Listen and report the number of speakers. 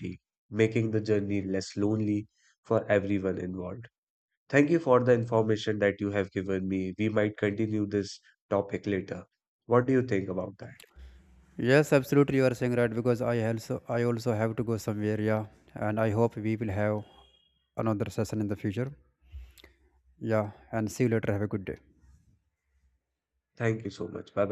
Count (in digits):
2